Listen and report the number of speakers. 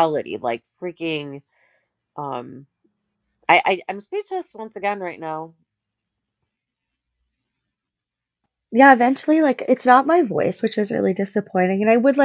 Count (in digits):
2